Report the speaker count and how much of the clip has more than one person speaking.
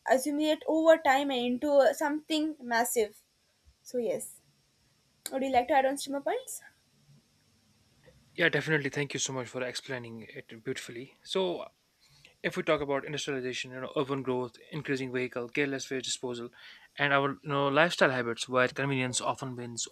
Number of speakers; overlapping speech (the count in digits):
2, no overlap